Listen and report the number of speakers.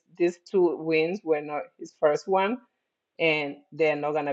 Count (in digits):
1